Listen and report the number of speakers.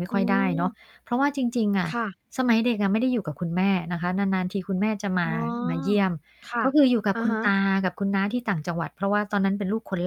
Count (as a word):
two